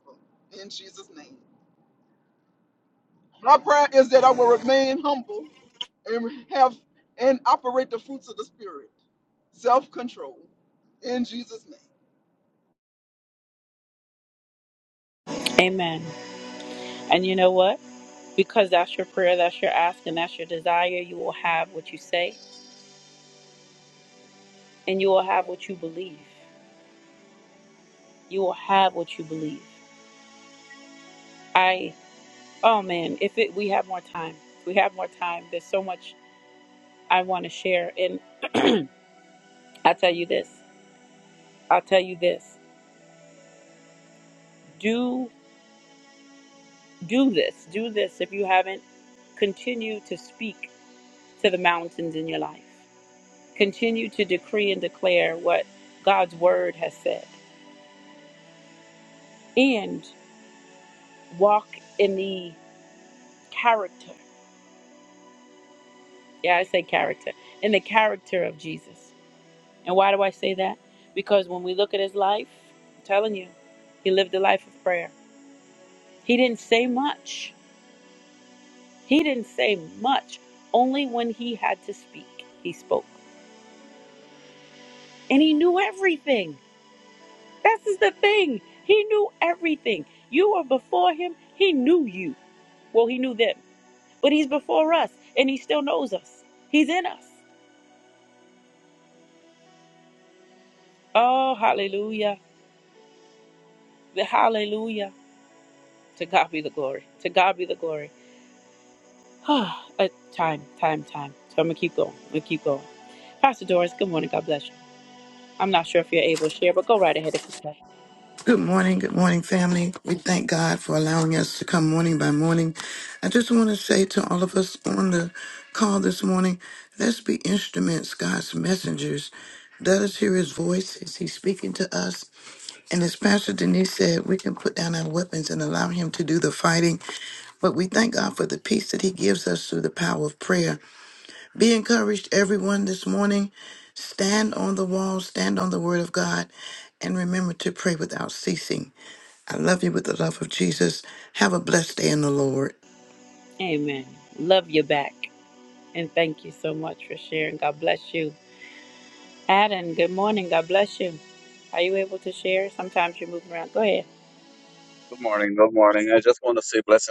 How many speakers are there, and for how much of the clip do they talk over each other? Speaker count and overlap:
4, no overlap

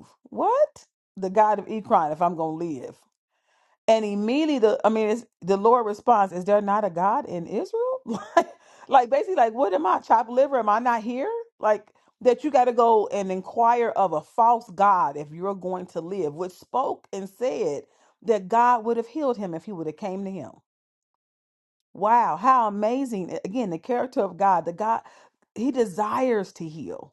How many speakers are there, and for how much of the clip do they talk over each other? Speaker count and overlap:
1, no overlap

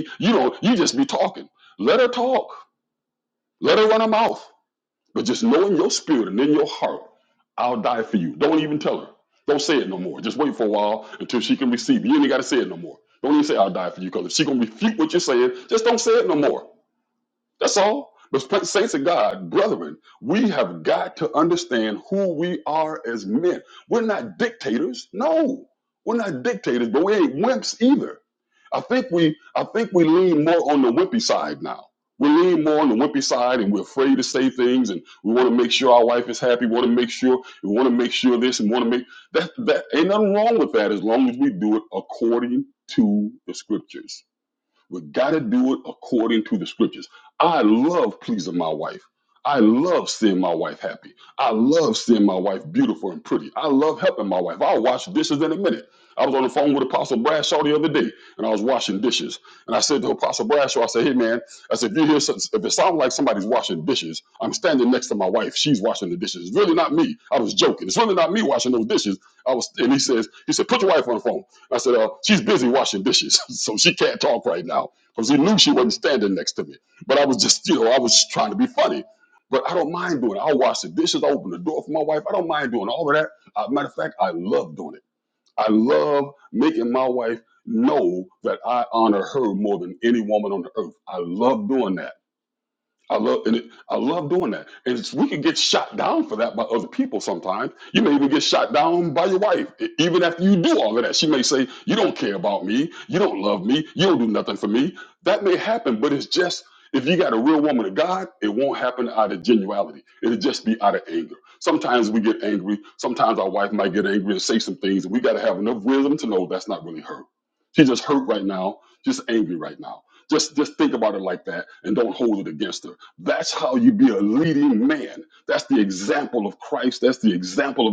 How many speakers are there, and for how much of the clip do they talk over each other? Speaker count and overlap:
1, no overlap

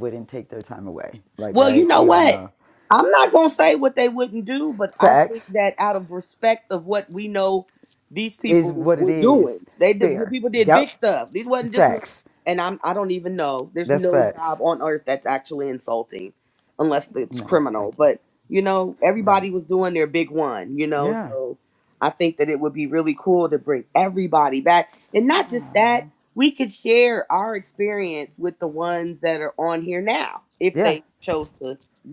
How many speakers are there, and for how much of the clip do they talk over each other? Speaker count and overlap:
2, about 20%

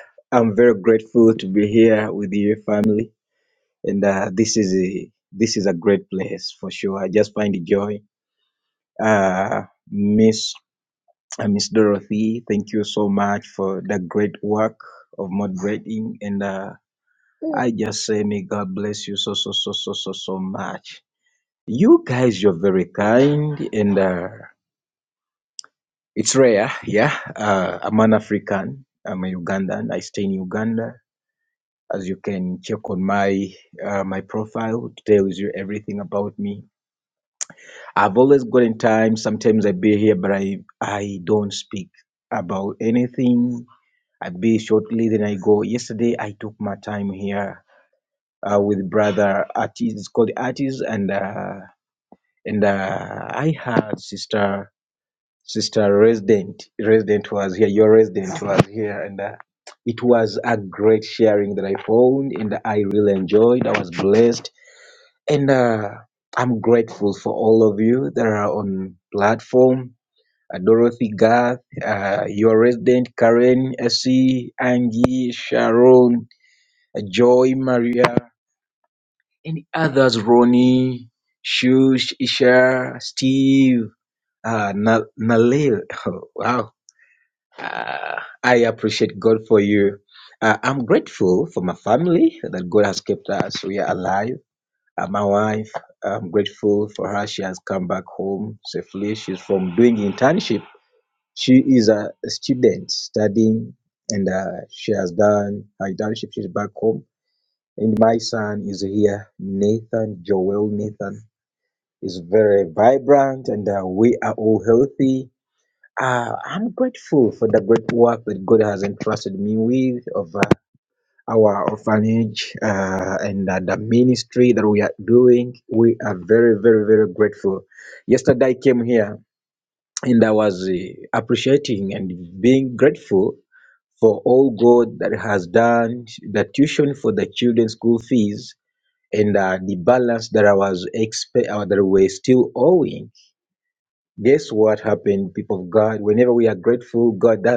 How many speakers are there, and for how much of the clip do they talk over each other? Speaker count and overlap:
1, no overlap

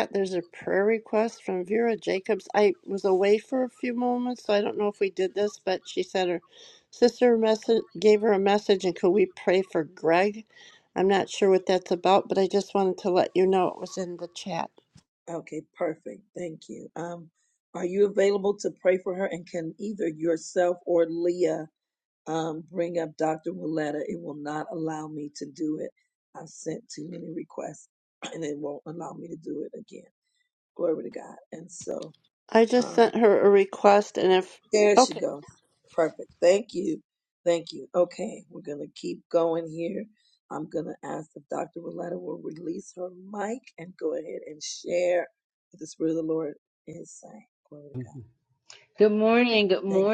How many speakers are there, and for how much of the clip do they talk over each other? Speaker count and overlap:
3, about 2%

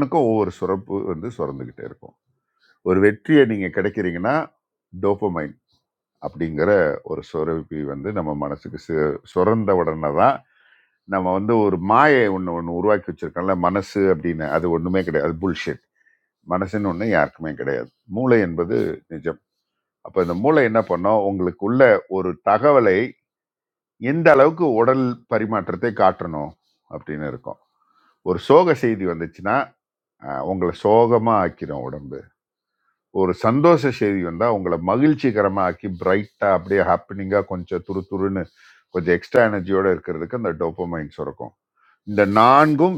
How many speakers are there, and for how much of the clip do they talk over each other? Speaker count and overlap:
1, no overlap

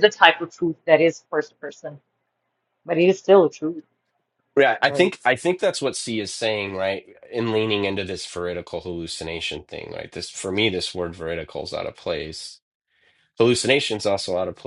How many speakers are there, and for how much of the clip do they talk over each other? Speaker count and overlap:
2, about 1%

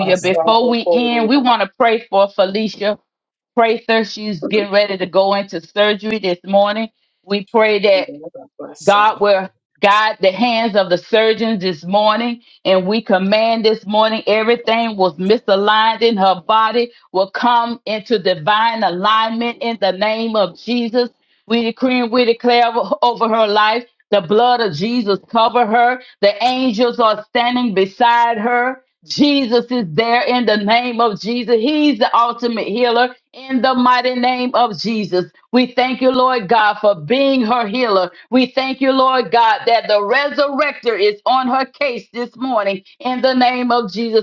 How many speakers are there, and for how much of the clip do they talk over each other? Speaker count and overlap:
2, about 4%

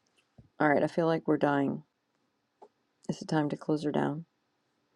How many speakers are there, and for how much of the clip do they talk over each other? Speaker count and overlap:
1, no overlap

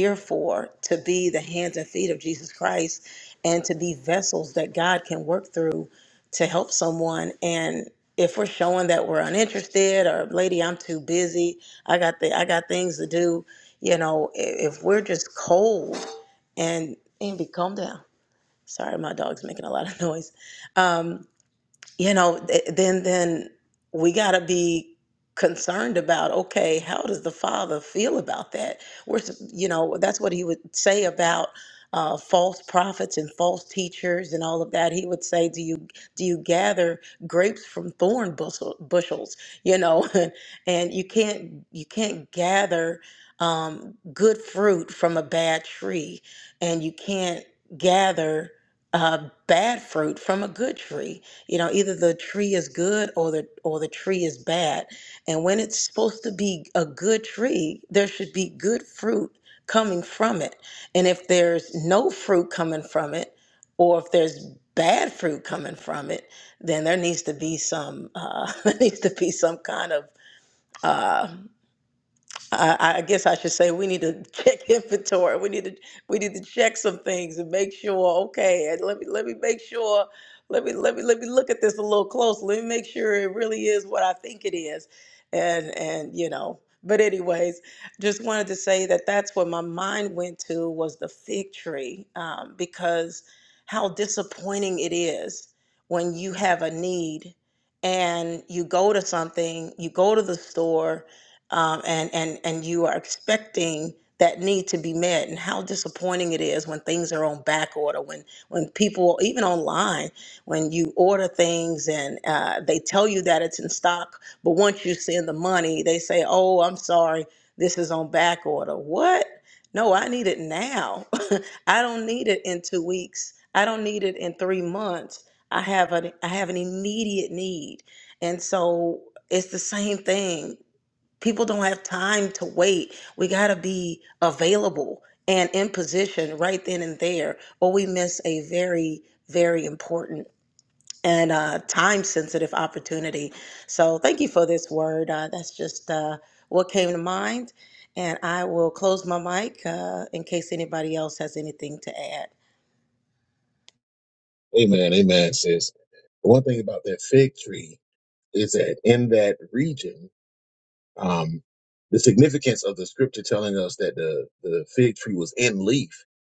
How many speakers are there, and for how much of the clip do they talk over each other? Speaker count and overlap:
2, no overlap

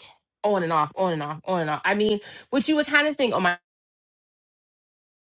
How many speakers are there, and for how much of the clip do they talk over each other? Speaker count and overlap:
1, no overlap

